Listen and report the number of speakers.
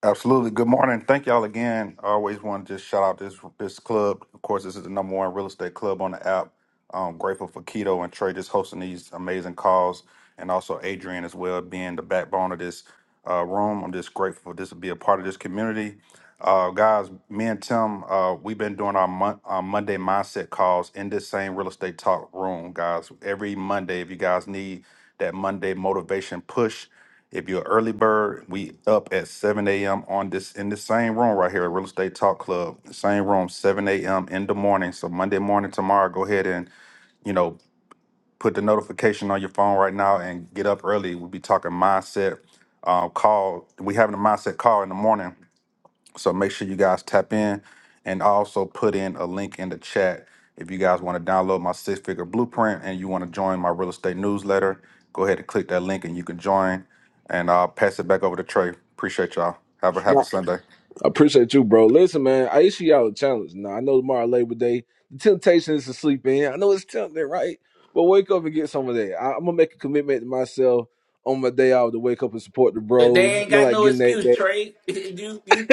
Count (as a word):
three